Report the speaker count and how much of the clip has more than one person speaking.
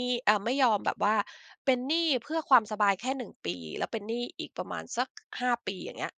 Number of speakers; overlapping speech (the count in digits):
1, no overlap